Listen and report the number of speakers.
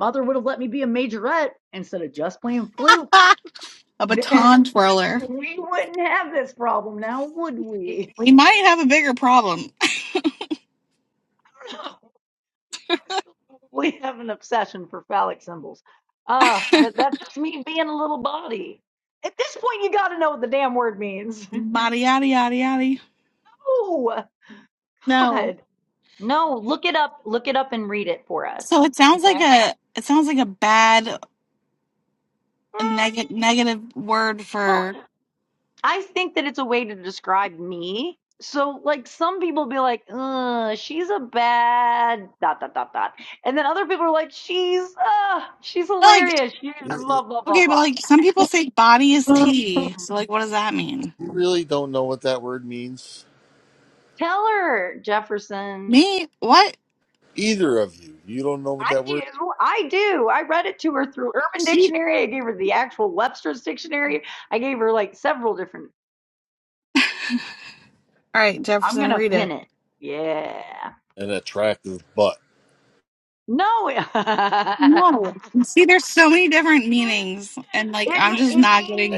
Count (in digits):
3